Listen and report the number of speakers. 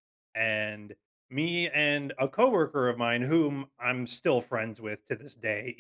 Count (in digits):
1